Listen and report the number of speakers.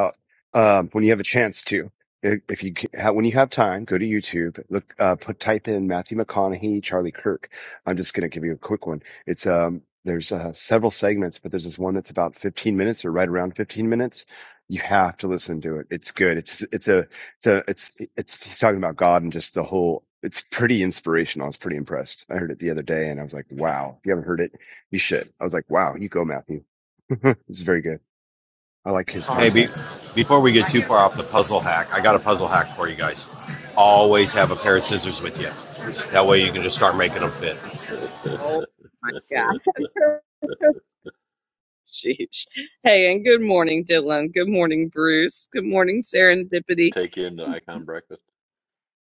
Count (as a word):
four